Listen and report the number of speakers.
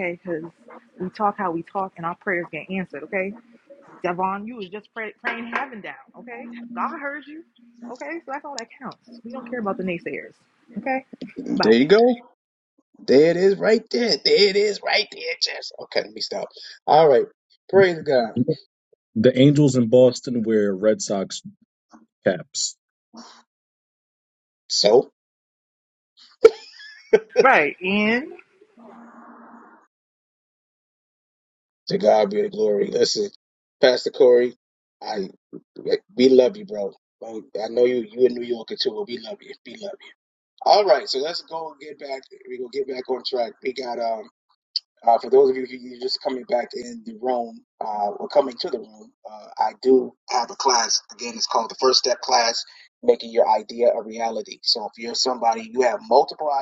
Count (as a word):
three